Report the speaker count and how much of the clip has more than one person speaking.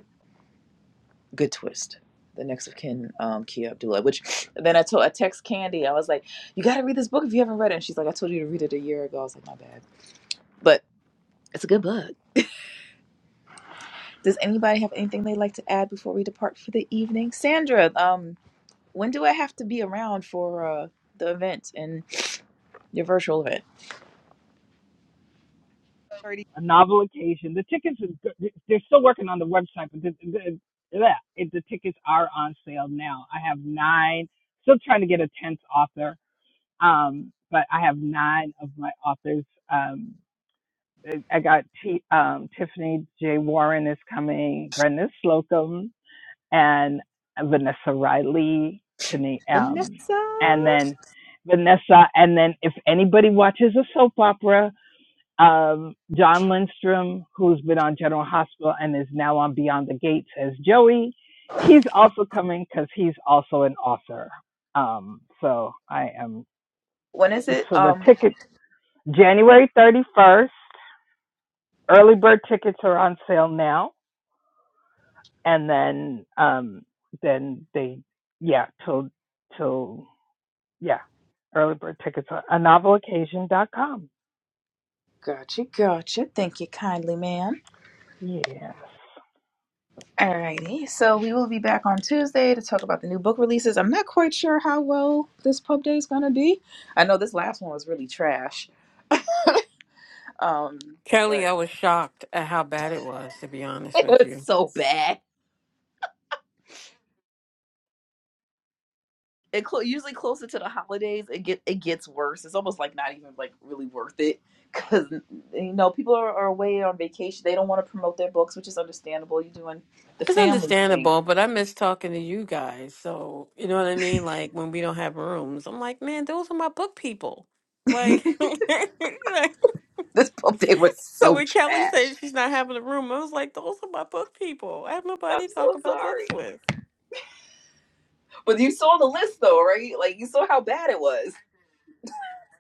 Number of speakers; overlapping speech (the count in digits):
3, about 3%